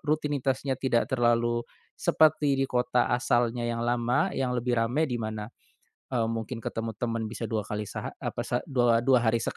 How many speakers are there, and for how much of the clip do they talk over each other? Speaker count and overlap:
1, no overlap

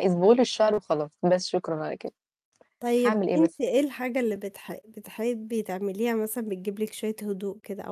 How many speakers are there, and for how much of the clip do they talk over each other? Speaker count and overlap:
2, about 5%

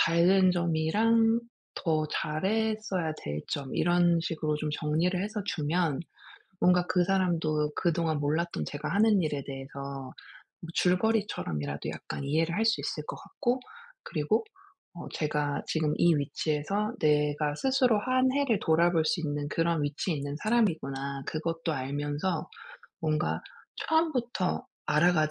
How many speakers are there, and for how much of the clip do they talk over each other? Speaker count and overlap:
1, no overlap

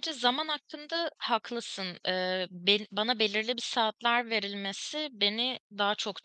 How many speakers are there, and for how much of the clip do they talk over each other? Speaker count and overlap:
1, no overlap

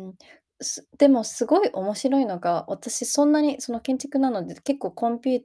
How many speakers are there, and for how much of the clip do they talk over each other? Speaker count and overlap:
1, no overlap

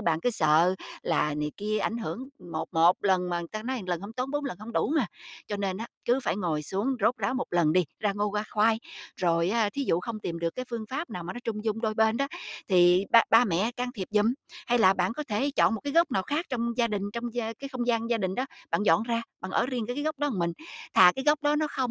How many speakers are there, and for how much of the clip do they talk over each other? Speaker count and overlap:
1, no overlap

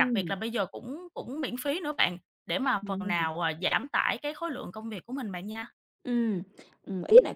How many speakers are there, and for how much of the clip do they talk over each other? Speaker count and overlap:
2, about 11%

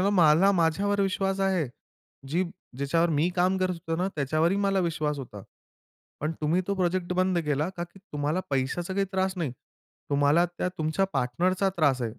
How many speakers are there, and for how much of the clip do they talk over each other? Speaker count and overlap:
1, no overlap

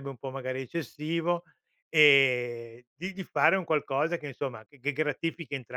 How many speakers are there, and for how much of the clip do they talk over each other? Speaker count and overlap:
1, no overlap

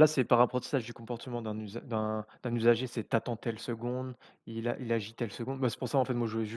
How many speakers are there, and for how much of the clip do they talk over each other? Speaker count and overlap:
1, no overlap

